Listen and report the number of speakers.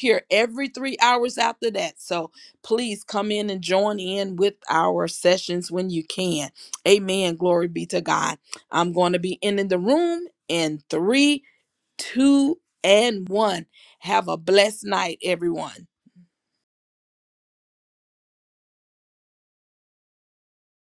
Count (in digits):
1